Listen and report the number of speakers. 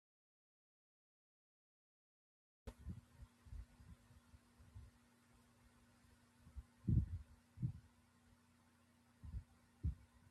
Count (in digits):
0